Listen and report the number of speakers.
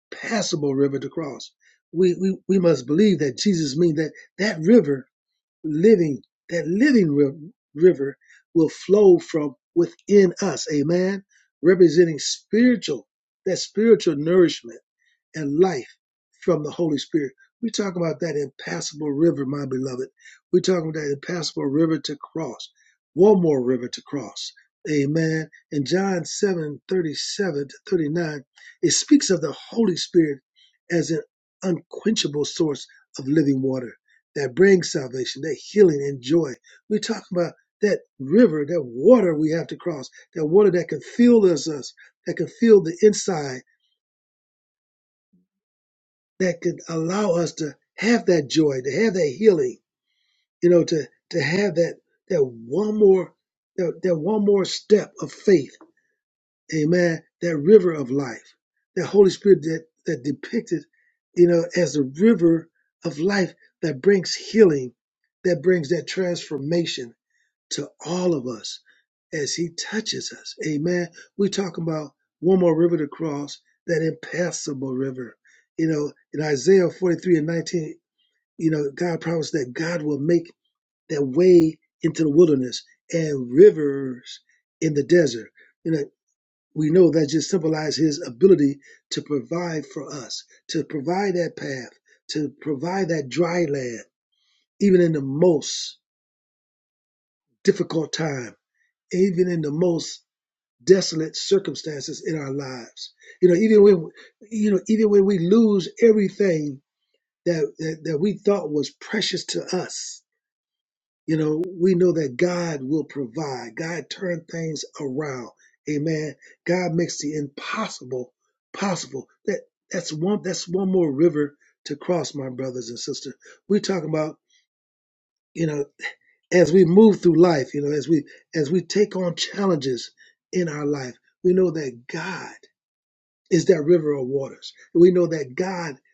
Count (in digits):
1